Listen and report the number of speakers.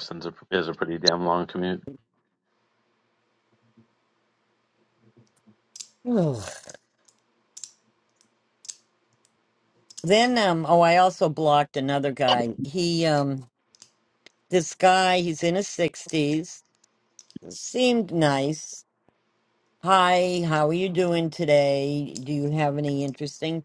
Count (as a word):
two